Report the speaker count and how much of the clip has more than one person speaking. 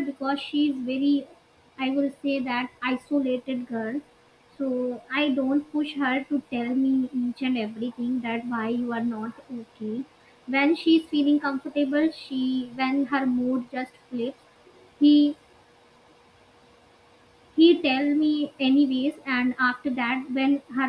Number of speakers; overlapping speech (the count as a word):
one, no overlap